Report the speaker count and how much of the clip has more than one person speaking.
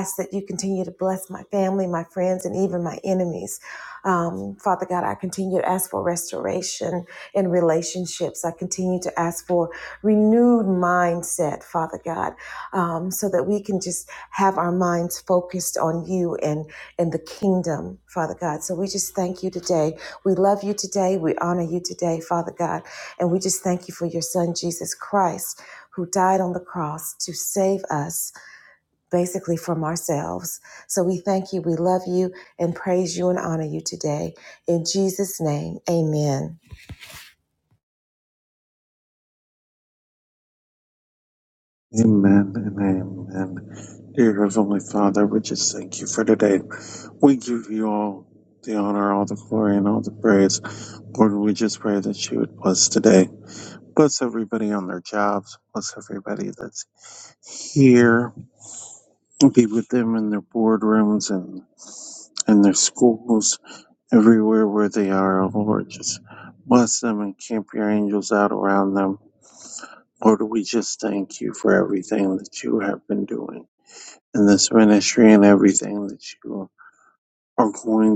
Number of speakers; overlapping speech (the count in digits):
2, no overlap